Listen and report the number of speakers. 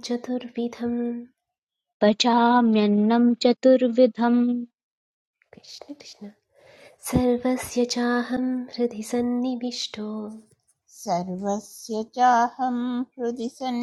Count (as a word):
three